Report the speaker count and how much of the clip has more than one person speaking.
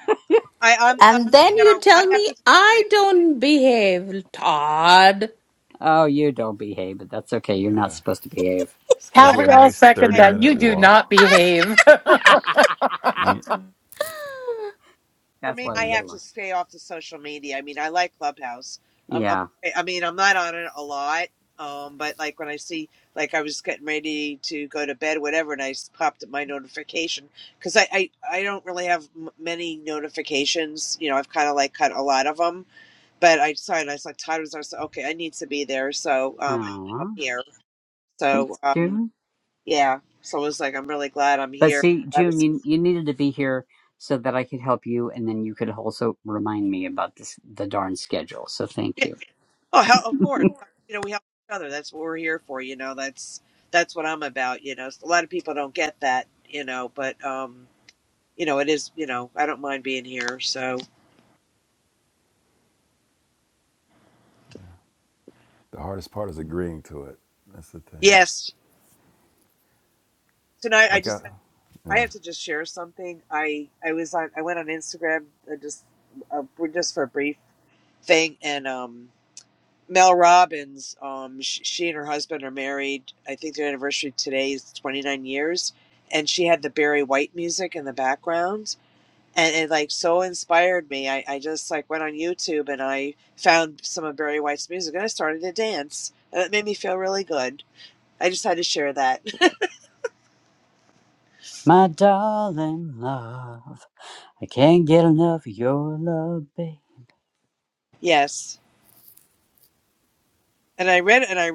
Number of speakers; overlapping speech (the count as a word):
five, about 7%